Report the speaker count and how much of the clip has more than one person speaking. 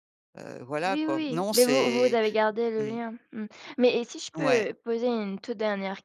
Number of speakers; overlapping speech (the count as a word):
two, about 31%